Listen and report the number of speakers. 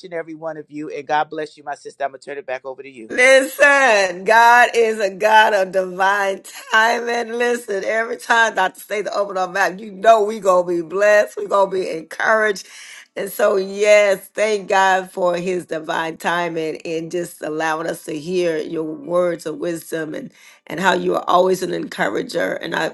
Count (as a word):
two